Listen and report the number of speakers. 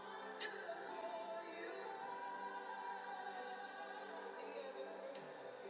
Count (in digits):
0